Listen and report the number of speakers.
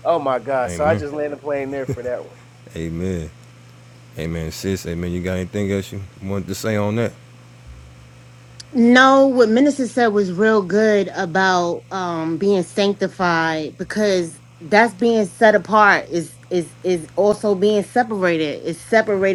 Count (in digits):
3